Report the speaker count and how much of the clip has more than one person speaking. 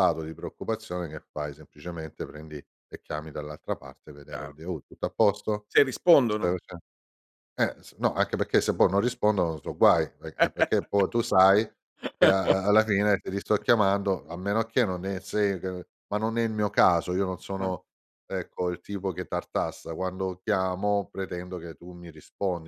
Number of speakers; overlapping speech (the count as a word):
two, about 1%